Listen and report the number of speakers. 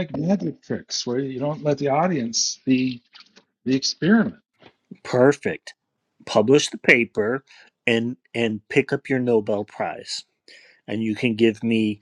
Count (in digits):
2